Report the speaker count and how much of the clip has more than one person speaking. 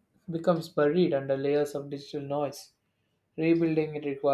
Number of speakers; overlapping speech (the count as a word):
one, no overlap